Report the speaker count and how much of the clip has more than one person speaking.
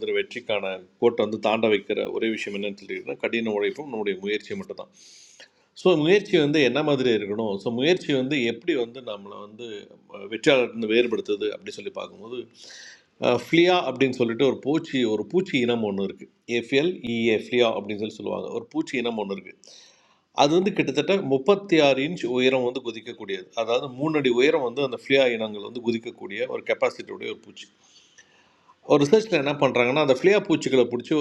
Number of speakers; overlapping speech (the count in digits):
1, no overlap